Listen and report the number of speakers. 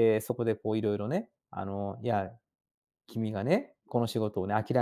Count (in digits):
1